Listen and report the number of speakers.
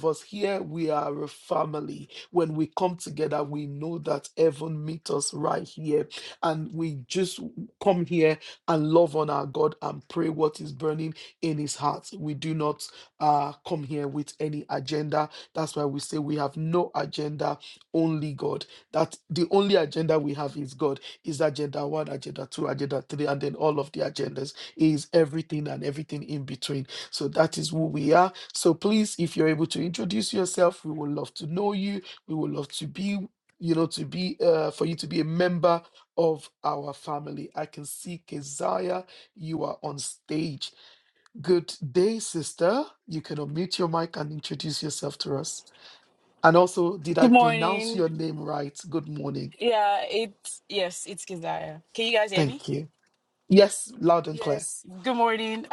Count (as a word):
two